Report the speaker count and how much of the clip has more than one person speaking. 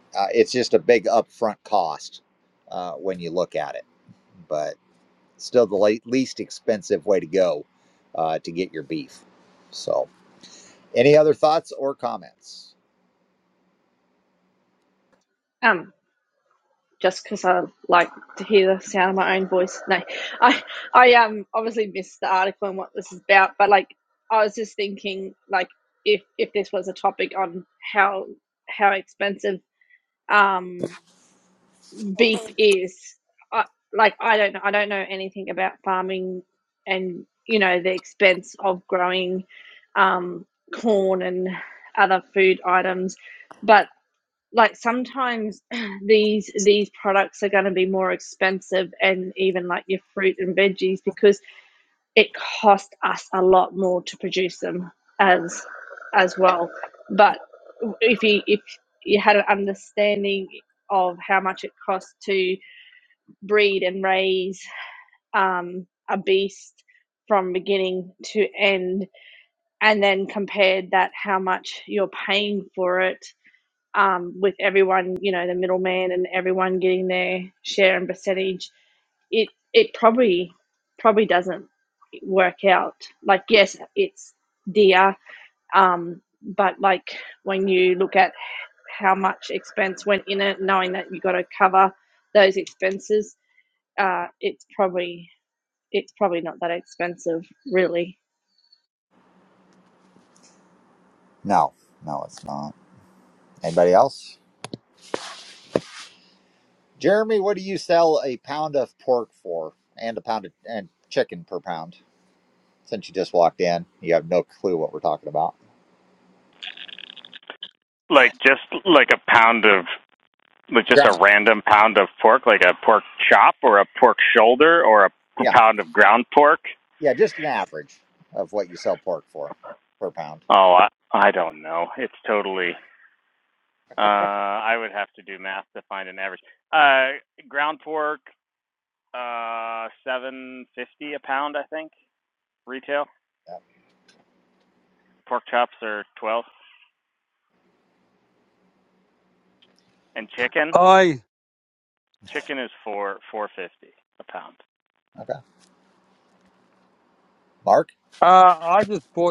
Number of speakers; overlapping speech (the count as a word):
four, under 1%